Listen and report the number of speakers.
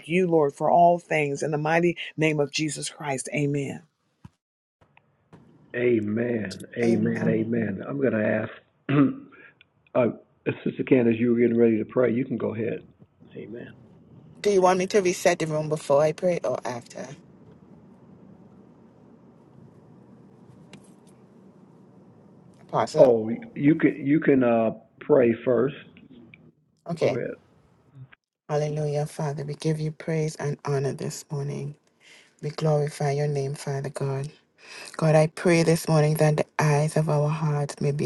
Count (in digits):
3